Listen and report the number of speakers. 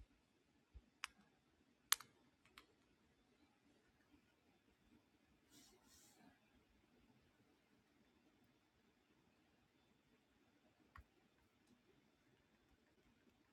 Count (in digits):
0